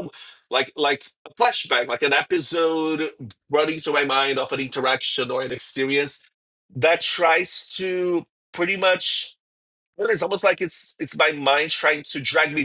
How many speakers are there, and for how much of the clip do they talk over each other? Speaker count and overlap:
1, no overlap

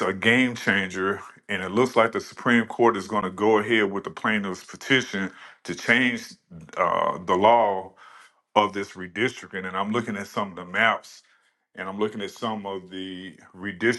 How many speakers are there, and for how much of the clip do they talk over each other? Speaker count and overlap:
1, no overlap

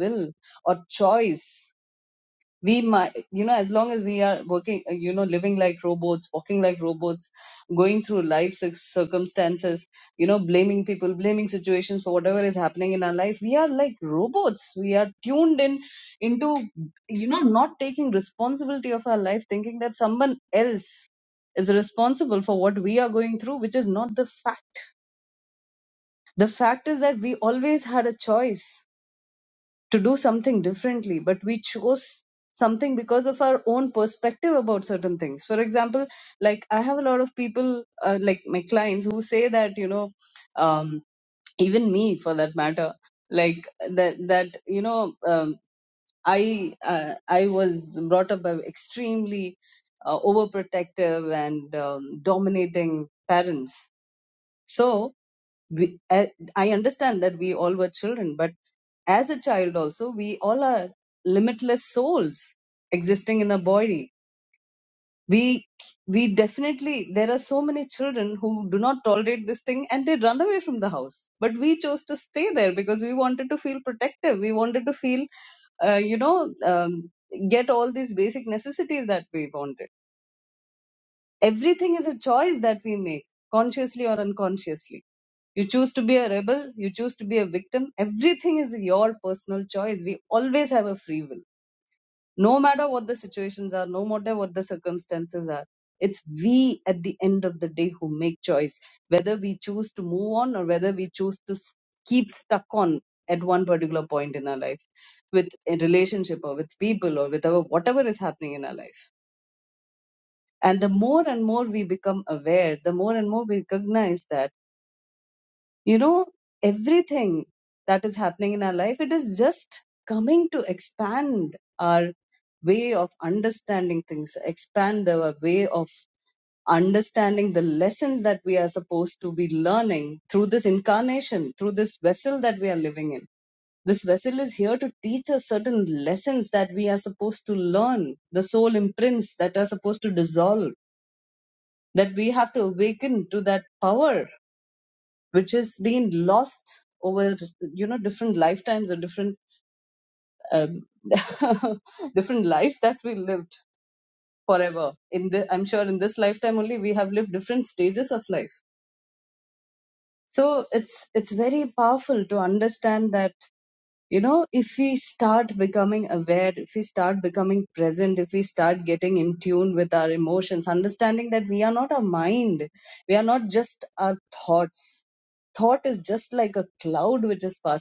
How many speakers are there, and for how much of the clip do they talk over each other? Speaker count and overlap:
1, no overlap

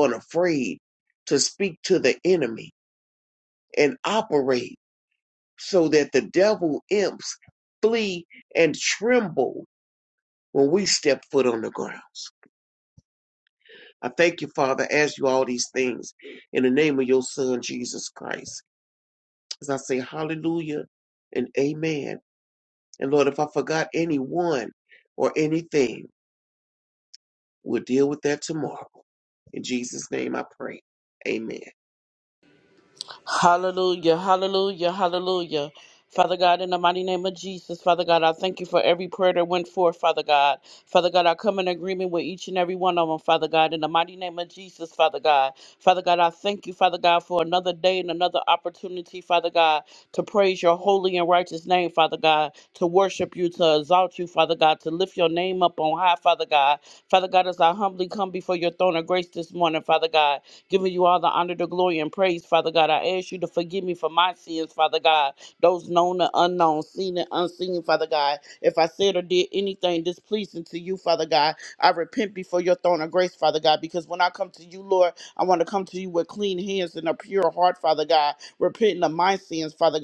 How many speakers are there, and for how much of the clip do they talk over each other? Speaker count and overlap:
2, no overlap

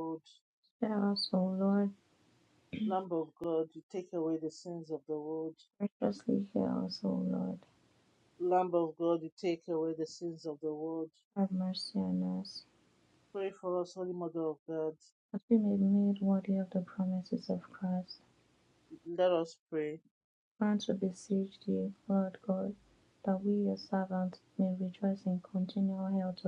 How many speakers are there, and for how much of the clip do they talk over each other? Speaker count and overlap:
2, no overlap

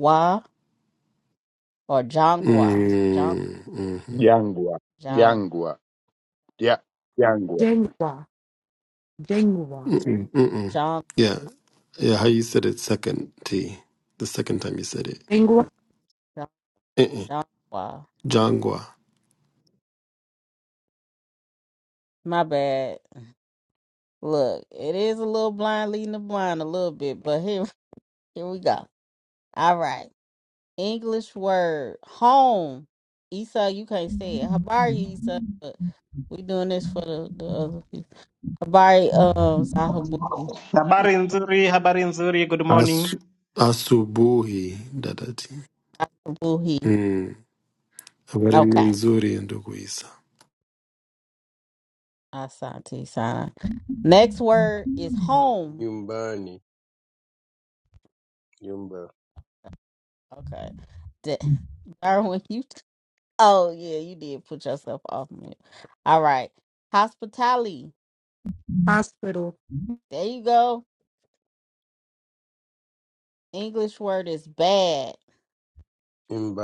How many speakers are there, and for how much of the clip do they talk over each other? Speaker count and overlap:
6, about 3%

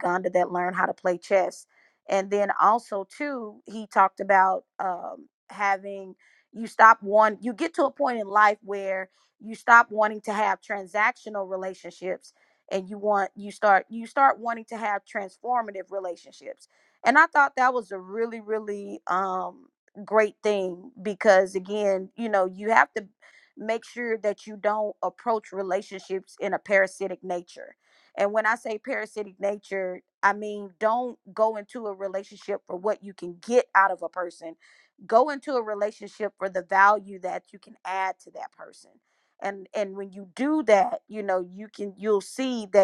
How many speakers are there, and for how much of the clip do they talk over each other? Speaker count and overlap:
1, no overlap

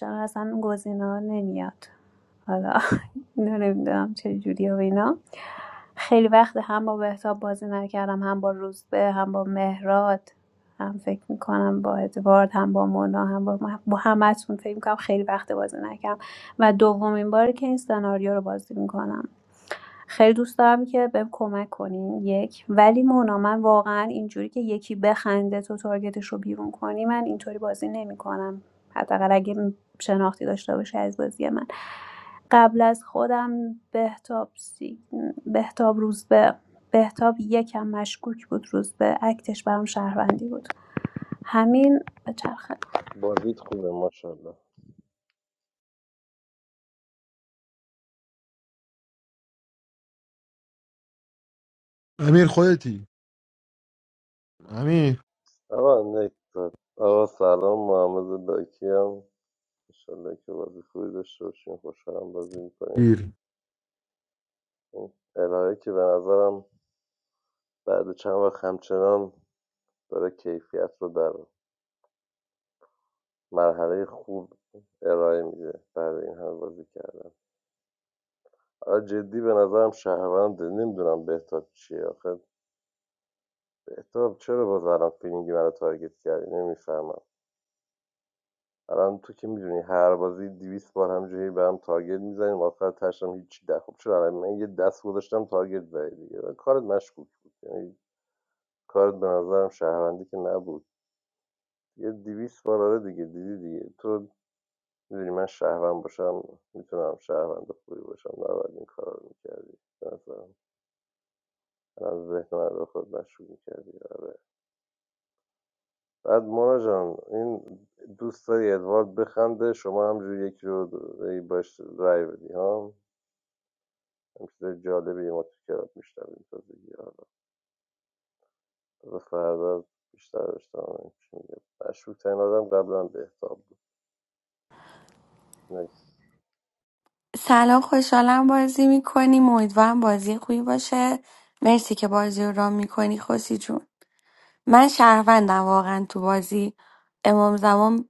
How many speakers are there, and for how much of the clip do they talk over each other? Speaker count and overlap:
4, under 1%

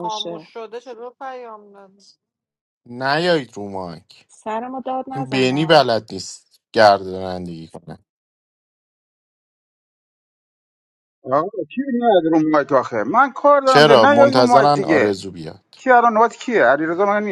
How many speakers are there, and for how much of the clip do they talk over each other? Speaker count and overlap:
4, about 15%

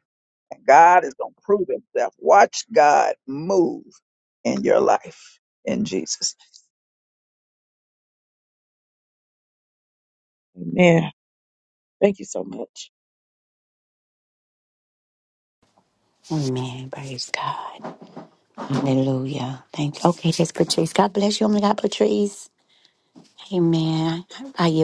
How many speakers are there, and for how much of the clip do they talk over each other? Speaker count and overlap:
3, no overlap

